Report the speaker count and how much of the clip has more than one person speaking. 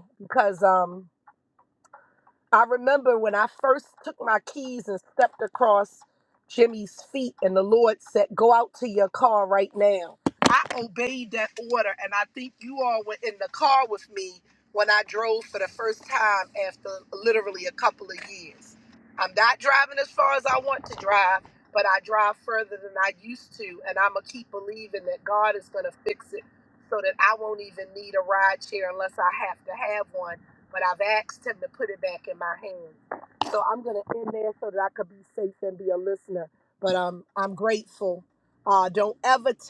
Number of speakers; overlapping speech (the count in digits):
1, no overlap